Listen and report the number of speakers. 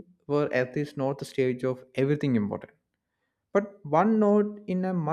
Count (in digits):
1